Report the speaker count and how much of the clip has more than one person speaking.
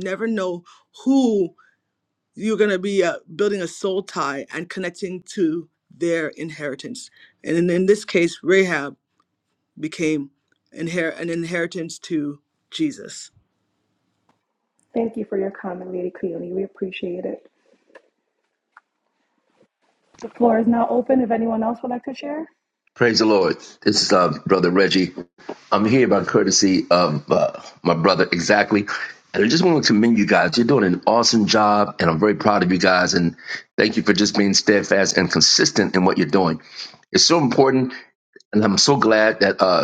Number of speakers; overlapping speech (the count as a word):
three, no overlap